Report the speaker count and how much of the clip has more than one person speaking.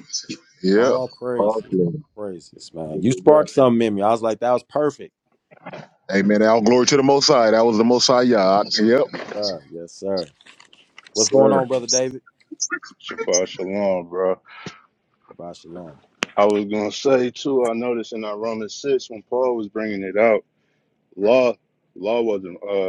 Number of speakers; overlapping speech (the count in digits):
3, about 6%